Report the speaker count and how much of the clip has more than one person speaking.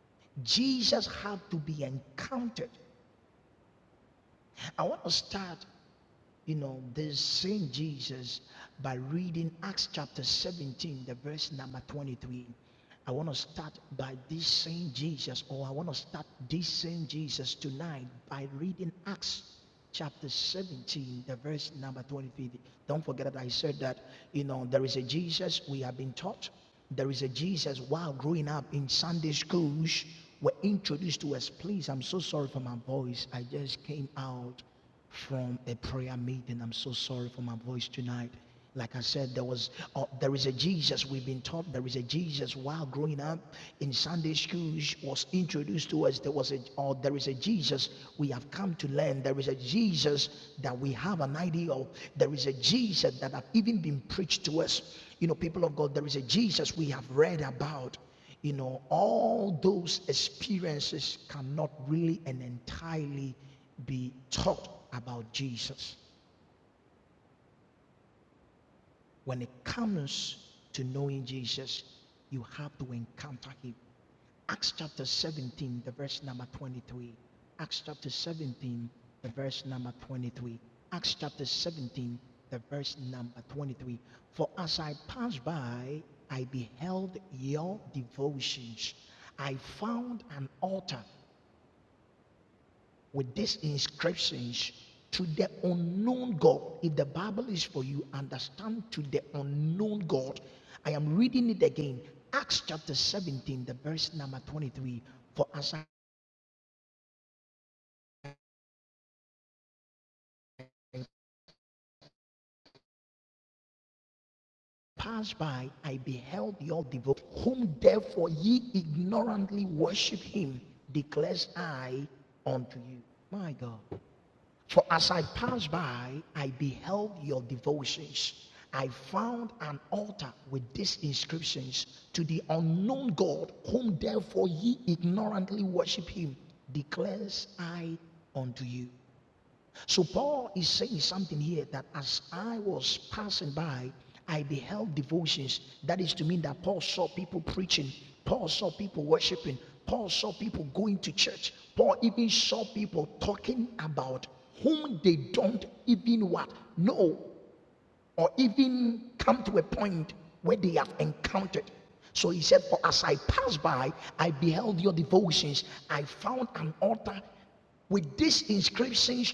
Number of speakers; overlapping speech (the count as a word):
one, no overlap